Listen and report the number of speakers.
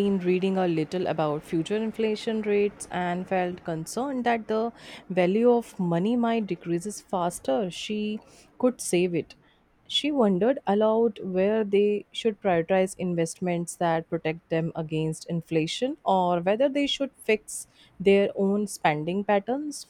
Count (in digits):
1